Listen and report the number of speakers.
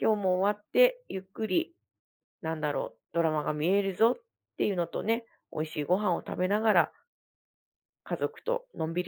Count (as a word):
one